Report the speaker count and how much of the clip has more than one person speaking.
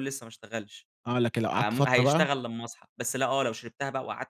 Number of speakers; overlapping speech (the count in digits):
2, about 17%